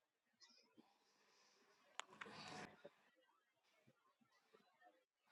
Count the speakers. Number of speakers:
0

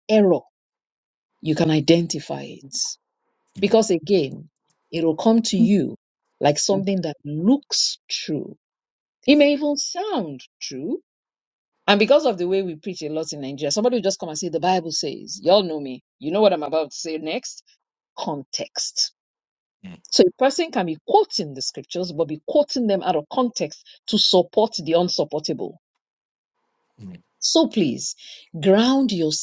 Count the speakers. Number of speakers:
1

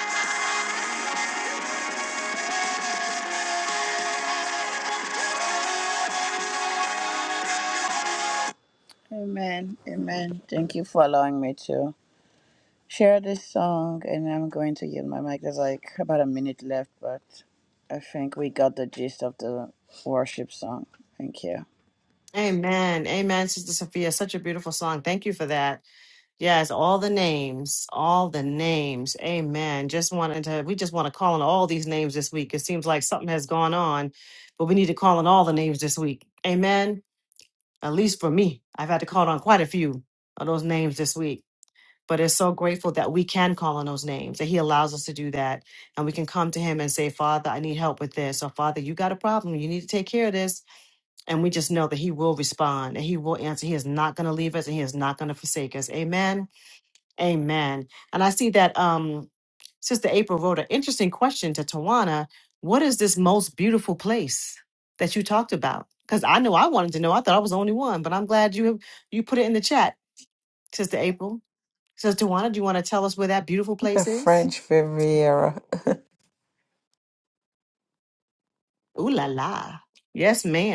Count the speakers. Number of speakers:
3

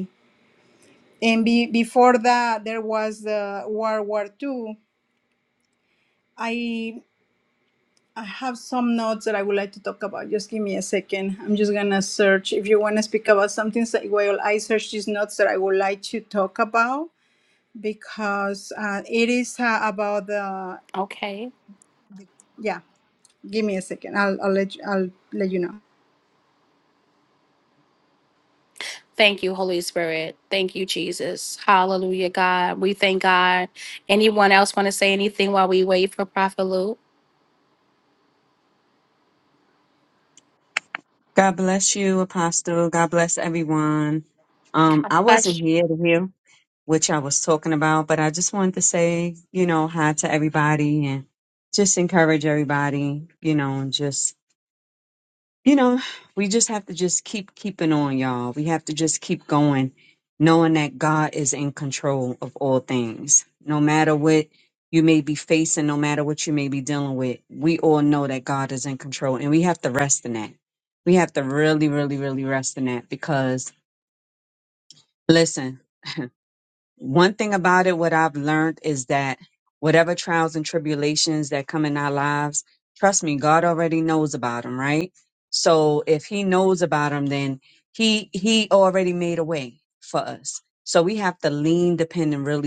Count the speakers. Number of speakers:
3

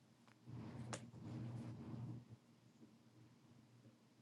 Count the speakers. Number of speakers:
0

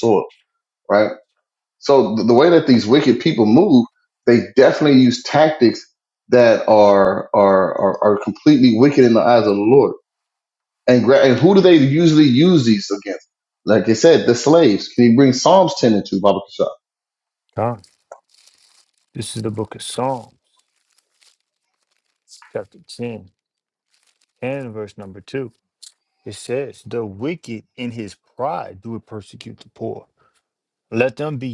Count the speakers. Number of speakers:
2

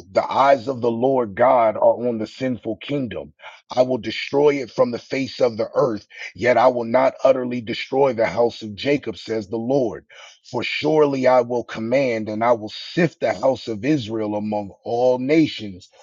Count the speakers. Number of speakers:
1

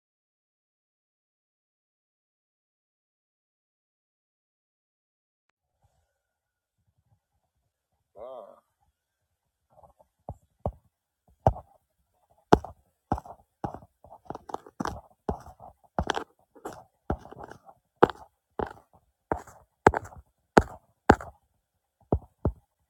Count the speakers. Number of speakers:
0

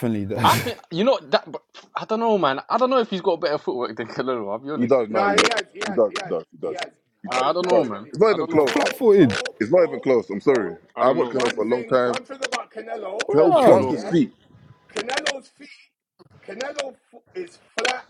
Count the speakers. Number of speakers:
4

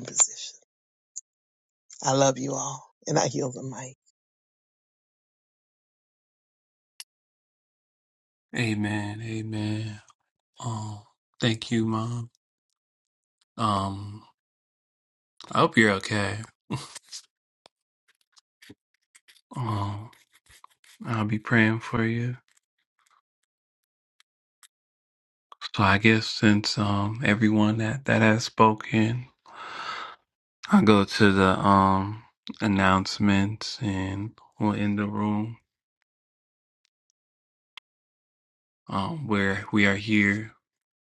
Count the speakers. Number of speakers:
2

